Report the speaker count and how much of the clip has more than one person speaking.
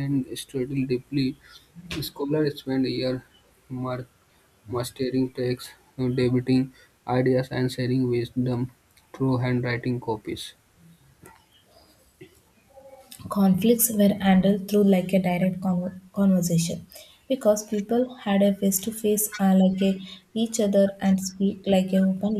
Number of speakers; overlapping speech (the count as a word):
two, no overlap